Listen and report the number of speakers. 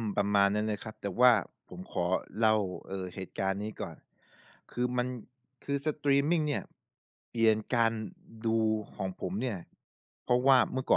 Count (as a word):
one